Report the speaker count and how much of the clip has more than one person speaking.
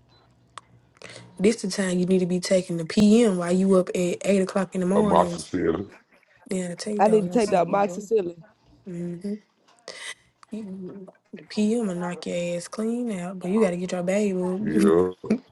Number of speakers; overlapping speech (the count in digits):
3, about 8%